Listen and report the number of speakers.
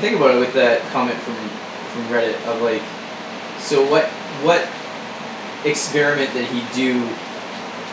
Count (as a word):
one